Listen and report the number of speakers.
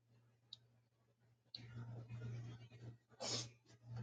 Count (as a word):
zero